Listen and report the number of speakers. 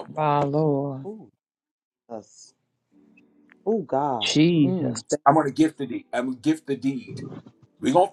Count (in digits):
3